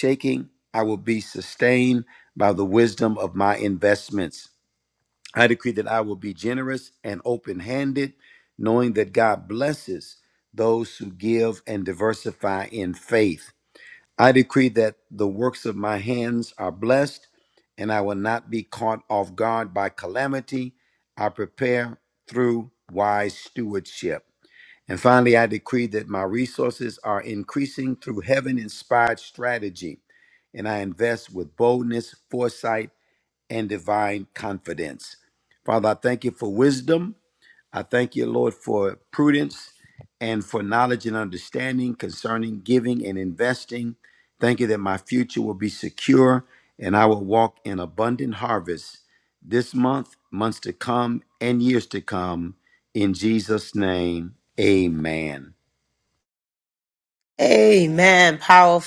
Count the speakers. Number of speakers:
2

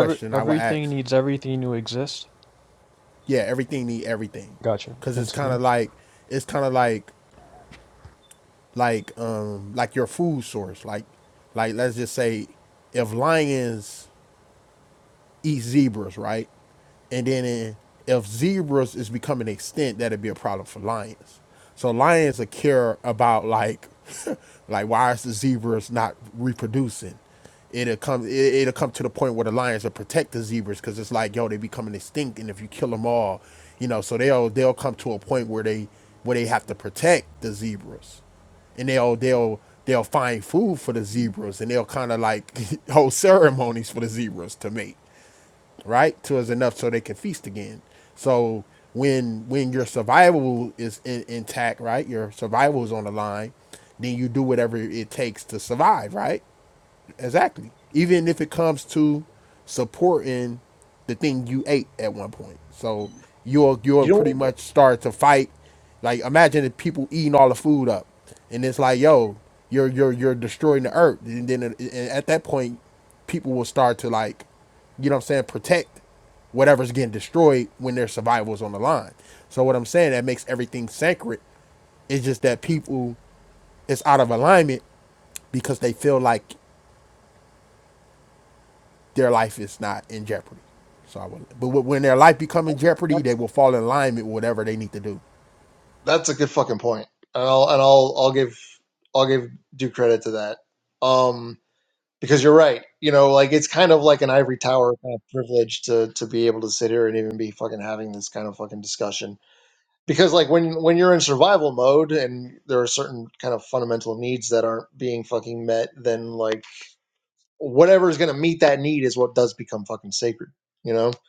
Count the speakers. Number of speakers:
3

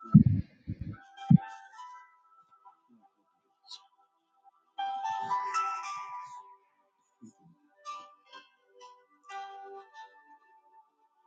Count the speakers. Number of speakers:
0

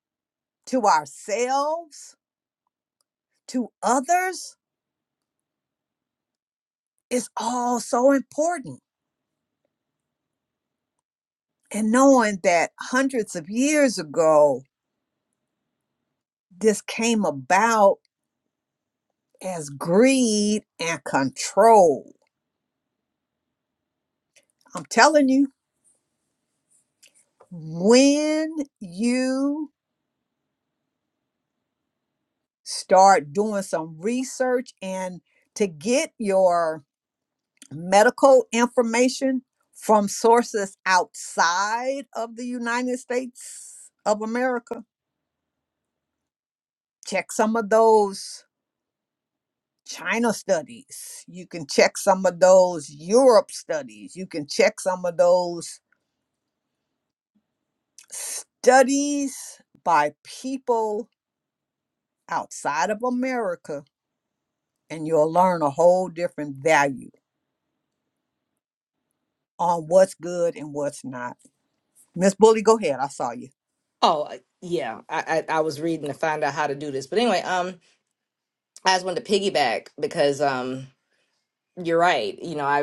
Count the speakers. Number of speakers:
2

